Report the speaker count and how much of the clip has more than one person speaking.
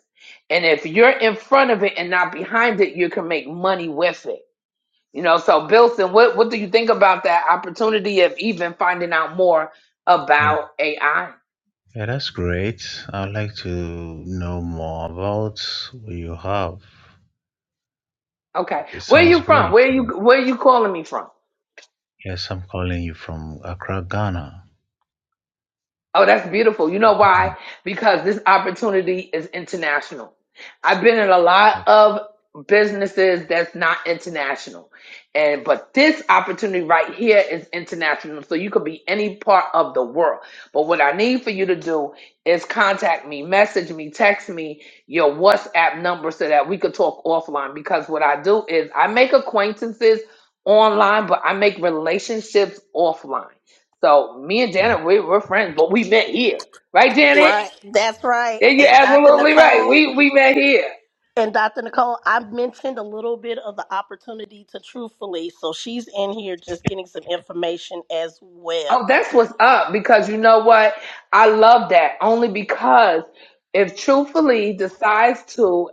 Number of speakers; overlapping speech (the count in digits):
3, about 5%